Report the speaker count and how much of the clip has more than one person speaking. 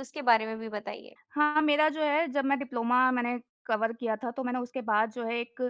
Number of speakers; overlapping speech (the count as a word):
two, no overlap